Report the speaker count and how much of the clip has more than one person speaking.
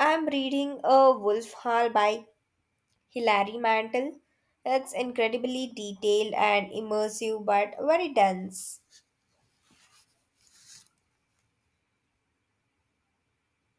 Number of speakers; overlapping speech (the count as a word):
one, no overlap